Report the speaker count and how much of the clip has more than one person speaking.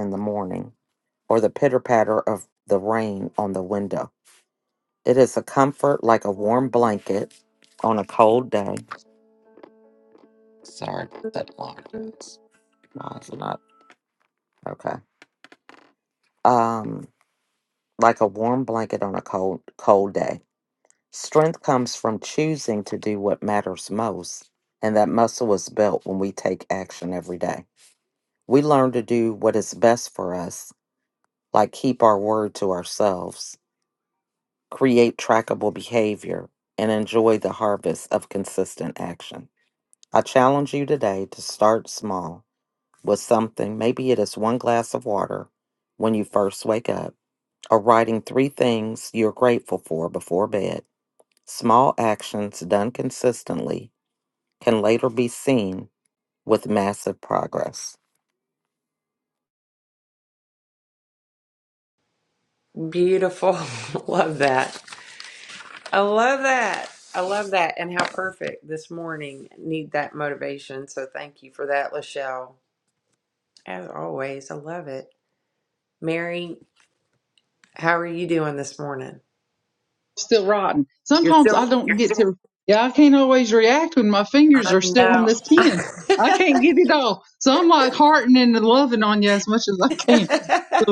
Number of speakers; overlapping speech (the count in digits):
3, about 2%